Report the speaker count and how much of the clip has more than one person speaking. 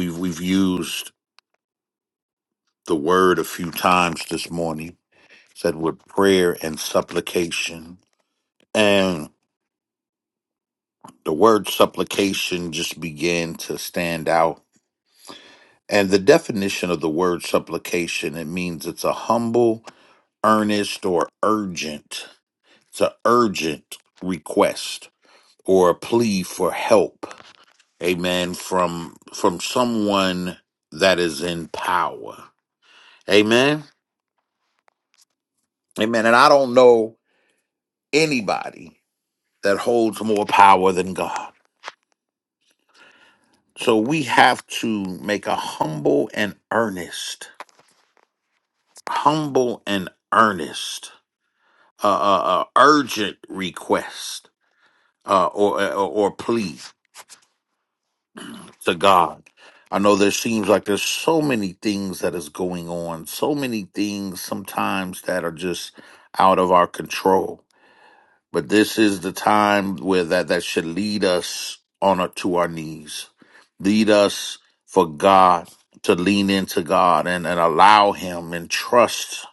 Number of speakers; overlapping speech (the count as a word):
one, no overlap